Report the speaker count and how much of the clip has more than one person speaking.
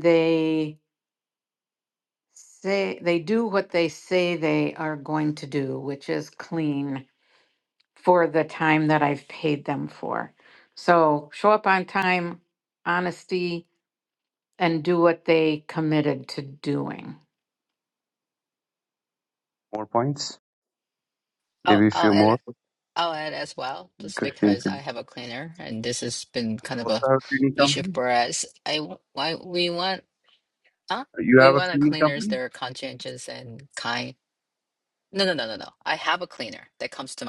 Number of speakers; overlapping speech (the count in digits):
3, about 8%